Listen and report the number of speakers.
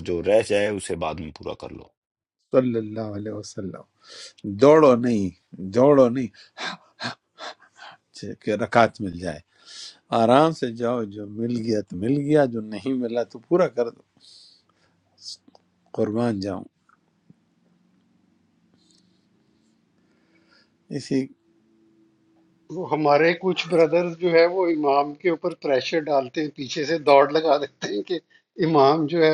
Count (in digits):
3